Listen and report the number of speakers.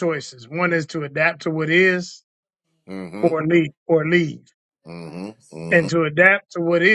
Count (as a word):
two